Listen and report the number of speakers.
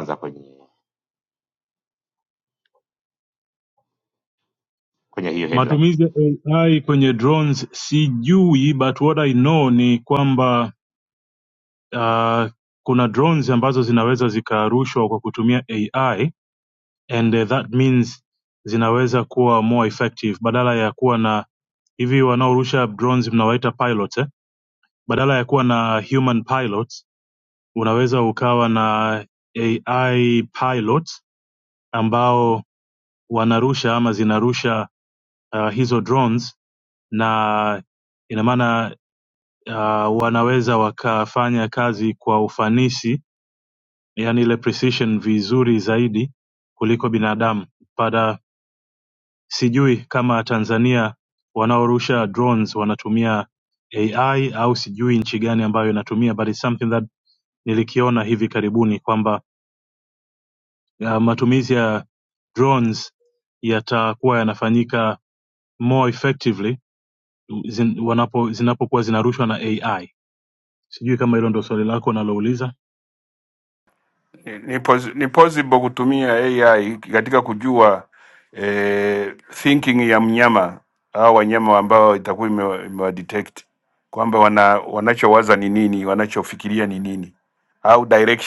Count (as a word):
three